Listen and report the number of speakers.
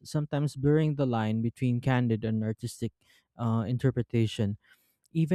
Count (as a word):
one